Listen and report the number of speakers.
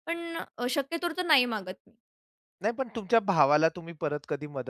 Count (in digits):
2